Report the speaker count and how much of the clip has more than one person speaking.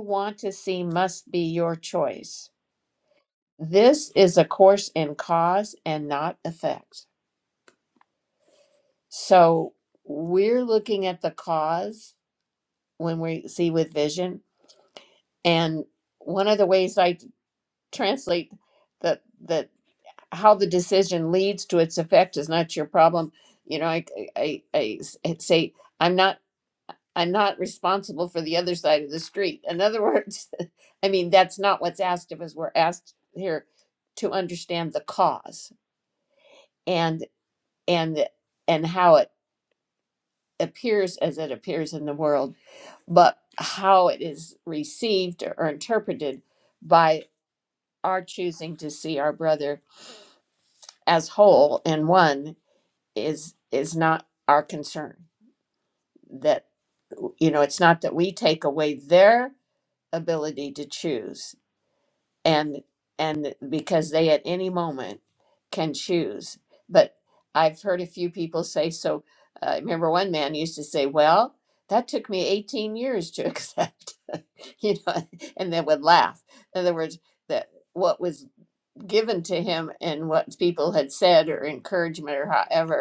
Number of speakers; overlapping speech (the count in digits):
1, no overlap